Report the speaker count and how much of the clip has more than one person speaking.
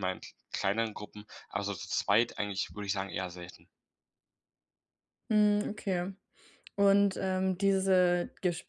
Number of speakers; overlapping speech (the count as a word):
two, no overlap